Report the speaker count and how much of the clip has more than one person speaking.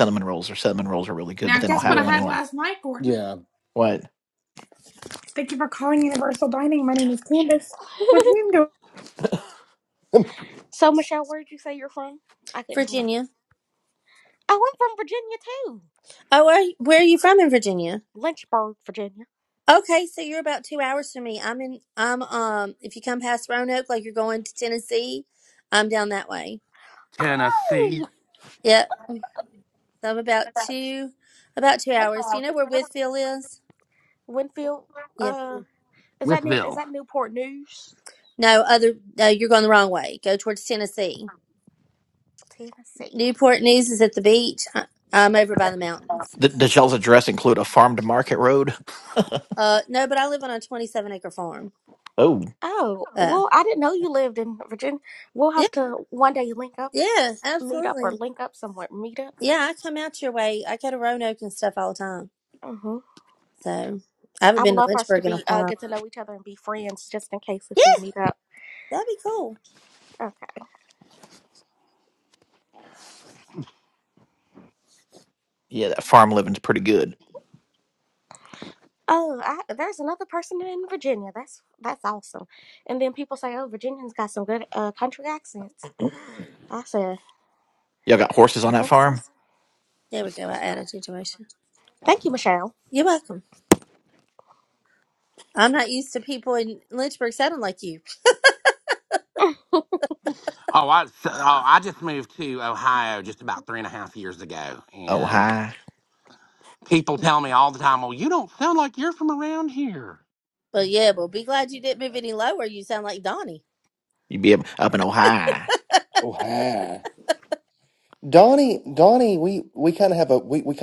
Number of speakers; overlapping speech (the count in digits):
6, about 5%